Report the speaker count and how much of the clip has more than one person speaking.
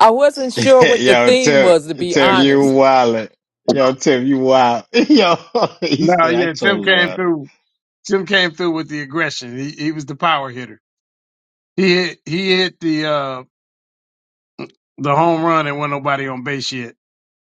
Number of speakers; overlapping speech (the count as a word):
three, about 17%